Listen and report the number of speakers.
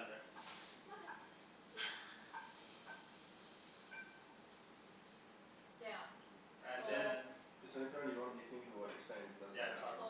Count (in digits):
3